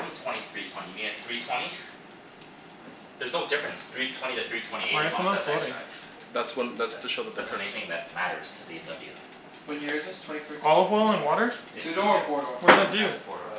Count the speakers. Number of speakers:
four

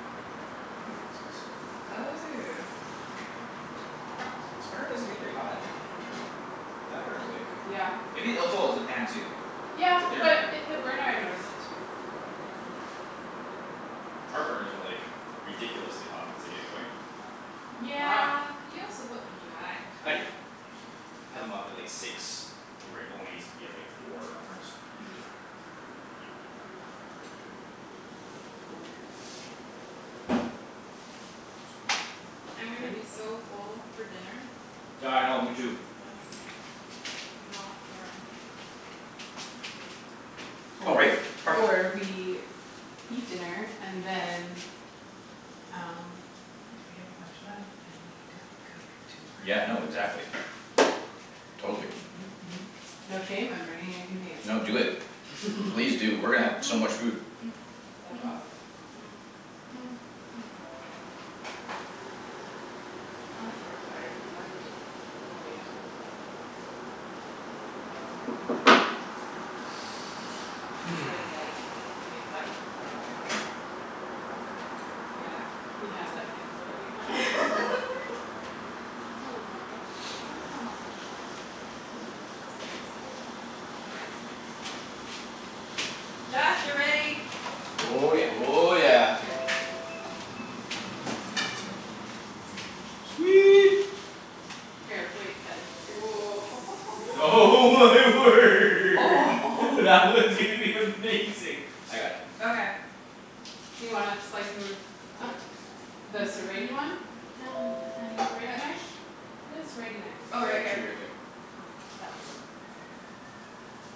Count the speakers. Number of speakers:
four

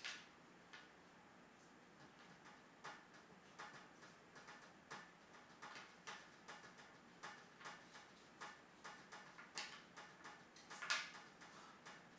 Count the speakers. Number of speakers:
zero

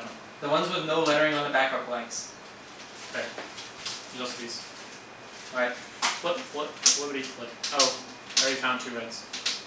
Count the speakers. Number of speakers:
two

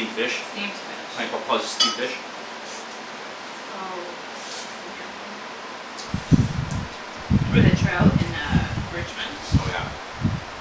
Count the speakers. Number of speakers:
two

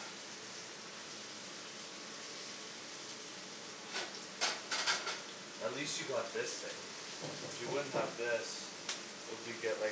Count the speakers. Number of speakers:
one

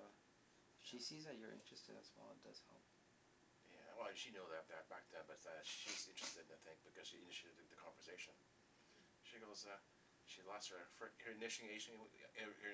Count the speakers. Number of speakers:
two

